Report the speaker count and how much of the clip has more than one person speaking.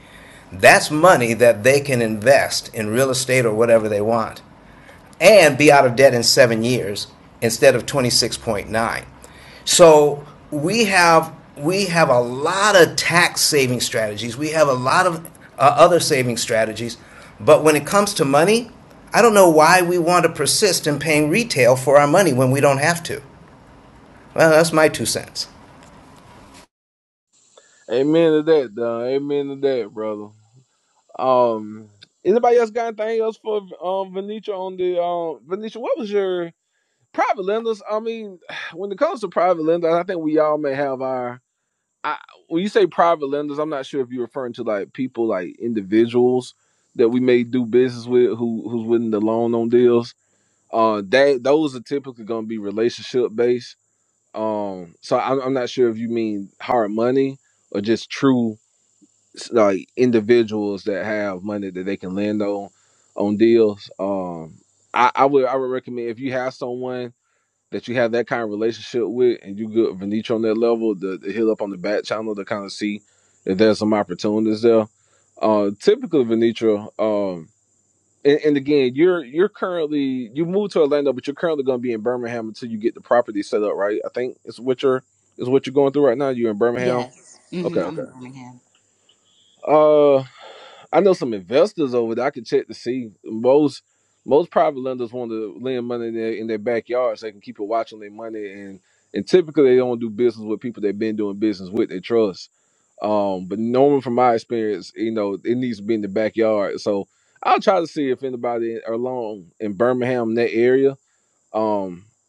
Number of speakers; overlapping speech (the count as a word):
three, about 1%